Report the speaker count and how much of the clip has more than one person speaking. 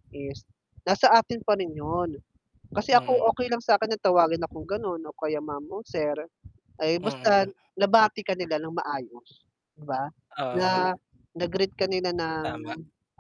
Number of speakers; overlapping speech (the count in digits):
2, about 9%